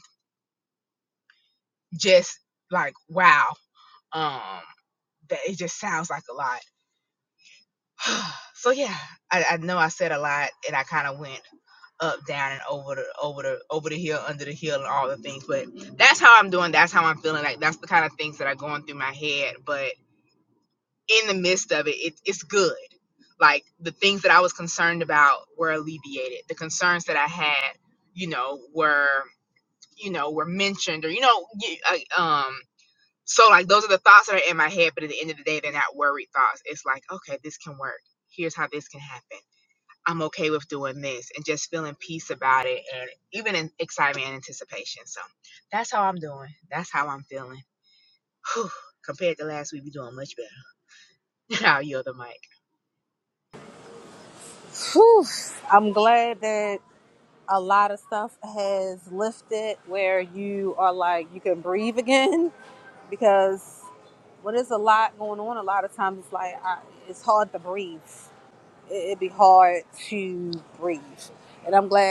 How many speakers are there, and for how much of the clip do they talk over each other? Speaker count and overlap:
two, no overlap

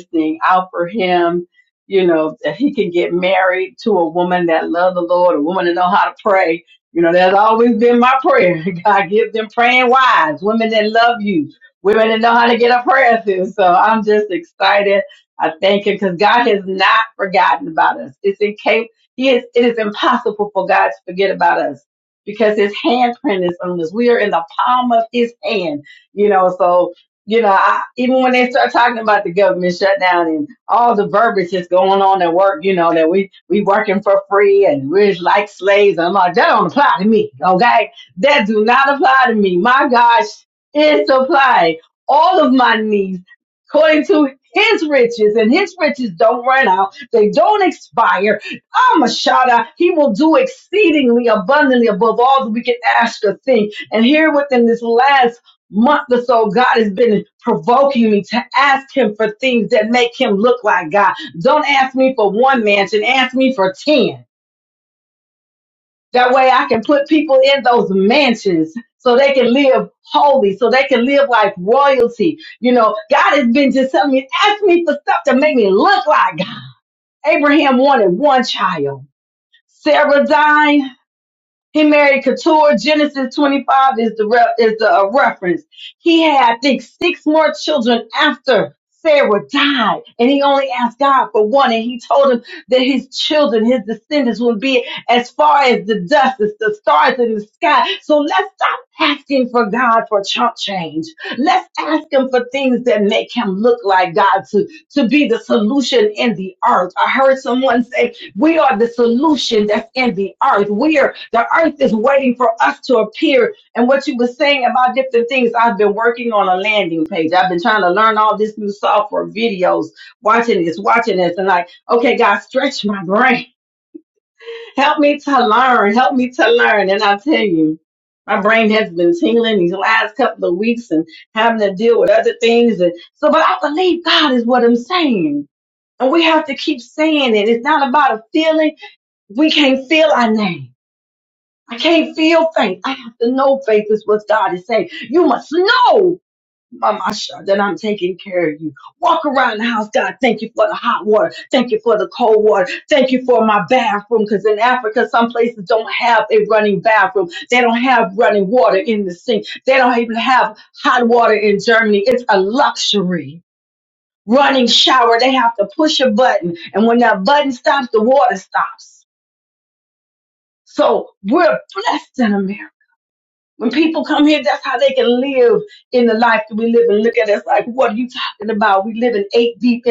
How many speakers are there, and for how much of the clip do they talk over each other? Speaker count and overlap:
one, no overlap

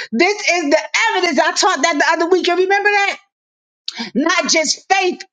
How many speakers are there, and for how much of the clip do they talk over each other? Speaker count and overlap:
one, no overlap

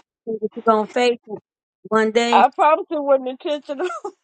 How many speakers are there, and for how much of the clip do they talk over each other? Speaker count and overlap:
two, about 4%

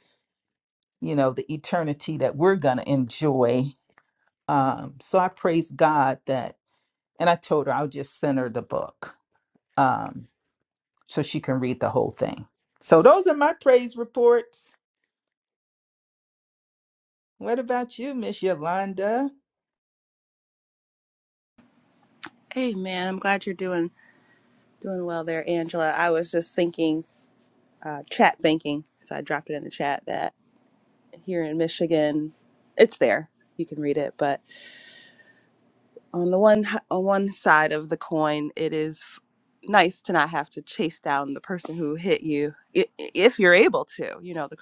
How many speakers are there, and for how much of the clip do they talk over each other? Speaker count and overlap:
two, no overlap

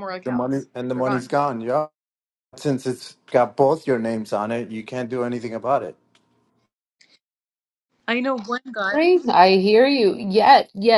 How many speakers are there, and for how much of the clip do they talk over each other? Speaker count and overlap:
three, about 5%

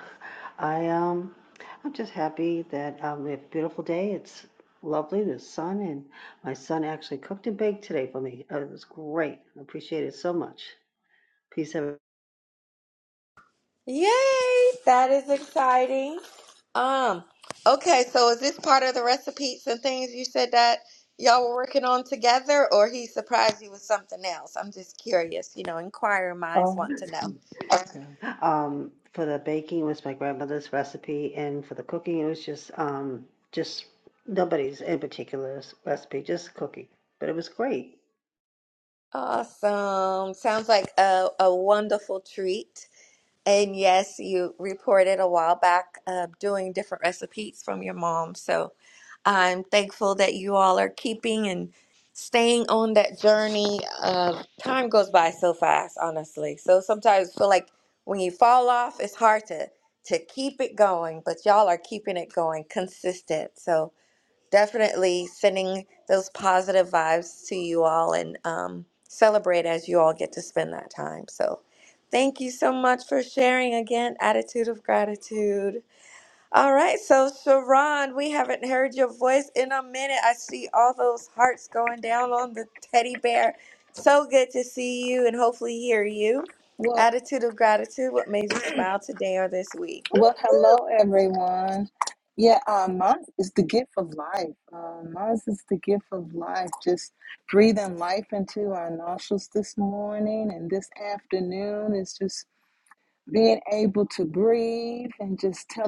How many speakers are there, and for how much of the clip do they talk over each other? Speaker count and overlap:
three, about 1%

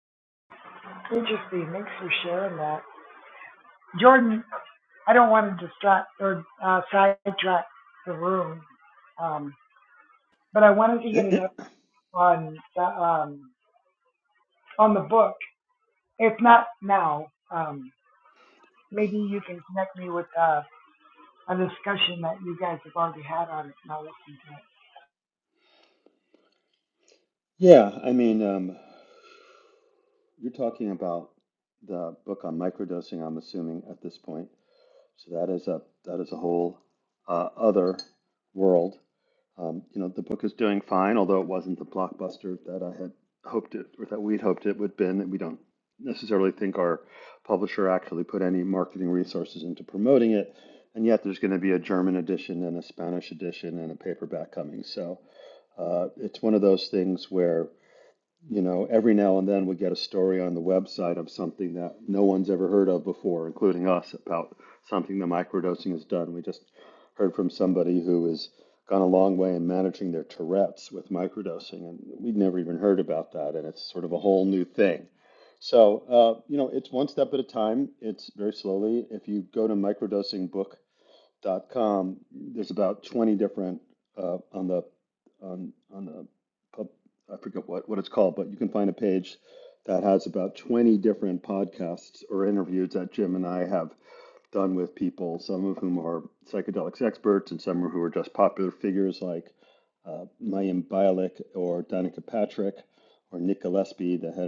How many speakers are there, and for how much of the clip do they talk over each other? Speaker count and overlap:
two, no overlap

